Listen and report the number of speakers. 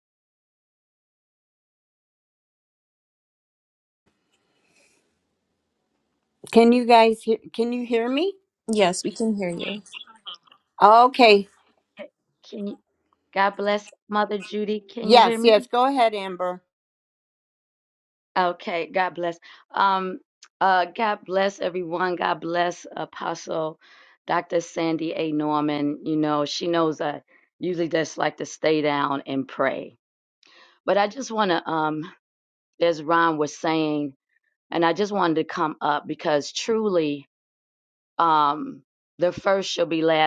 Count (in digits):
3